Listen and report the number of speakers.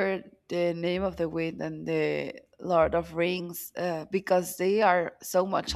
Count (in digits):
1